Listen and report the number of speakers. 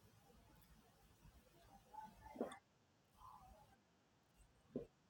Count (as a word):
zero